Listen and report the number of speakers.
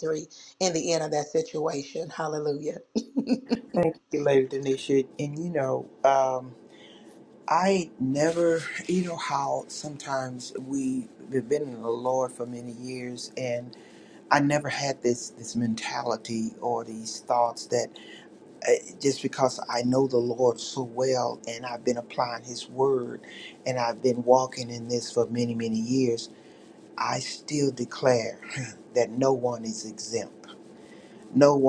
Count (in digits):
2